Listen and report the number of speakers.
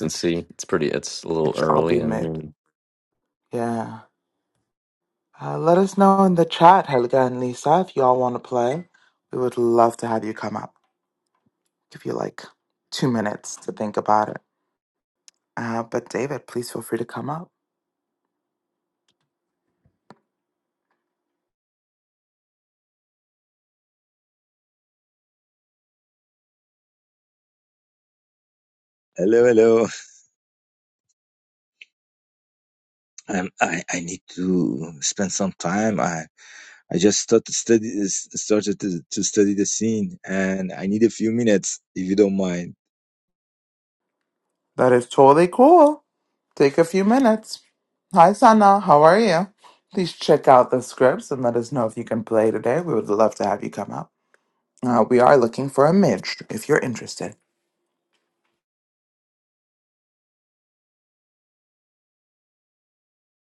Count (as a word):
three